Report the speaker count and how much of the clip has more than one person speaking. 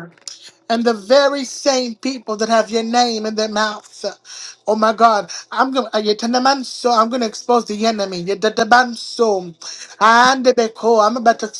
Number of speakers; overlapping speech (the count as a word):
one, no overlap